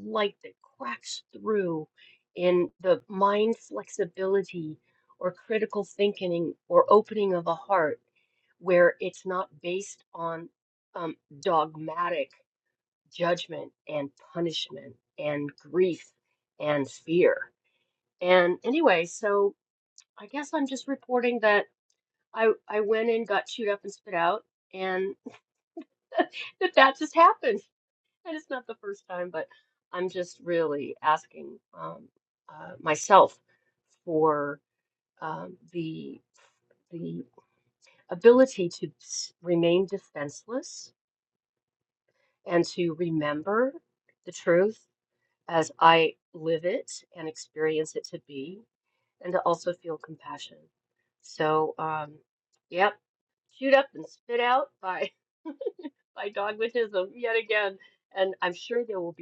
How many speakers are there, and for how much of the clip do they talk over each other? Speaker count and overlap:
1, no overlap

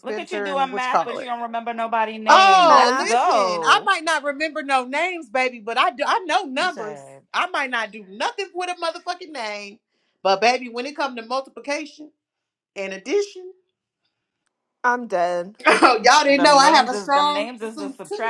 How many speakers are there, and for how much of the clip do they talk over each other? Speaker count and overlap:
3, about 29%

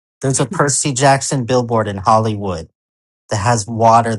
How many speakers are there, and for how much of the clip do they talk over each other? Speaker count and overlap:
1, no overlap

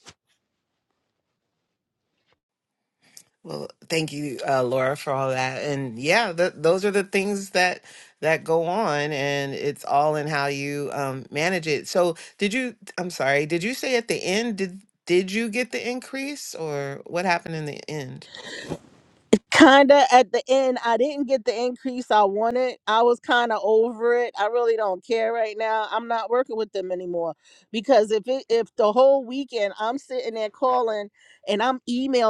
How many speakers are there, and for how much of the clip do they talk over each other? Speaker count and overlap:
2, no overlap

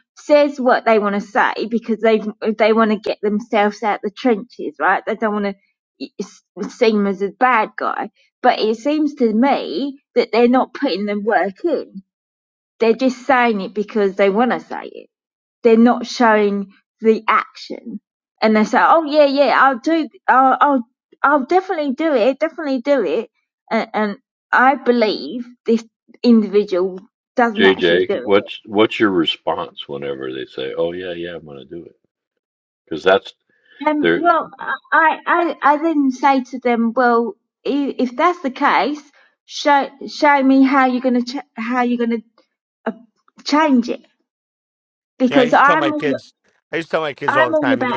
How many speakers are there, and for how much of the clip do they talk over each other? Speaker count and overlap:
3, about 6%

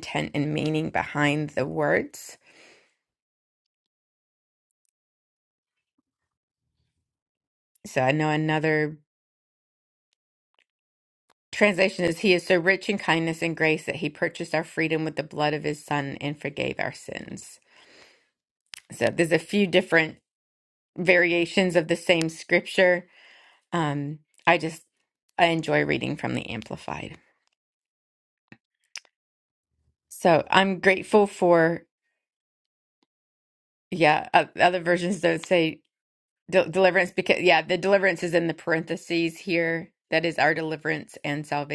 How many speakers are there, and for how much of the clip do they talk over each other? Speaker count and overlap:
1, no overlap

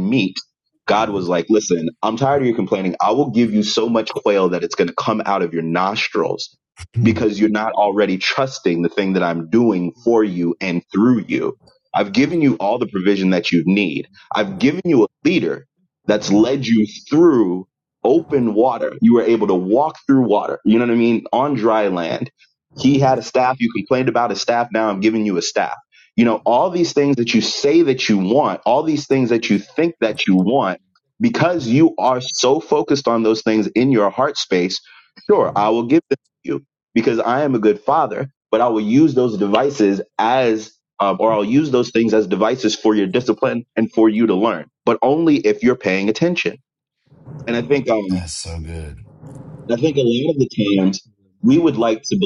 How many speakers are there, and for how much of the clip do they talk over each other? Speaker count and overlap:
2, under 1%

